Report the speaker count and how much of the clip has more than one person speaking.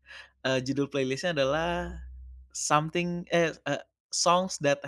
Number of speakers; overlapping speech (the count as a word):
one, no overlap